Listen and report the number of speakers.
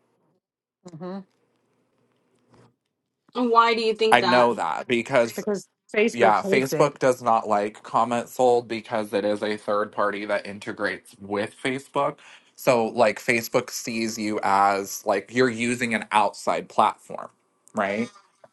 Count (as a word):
three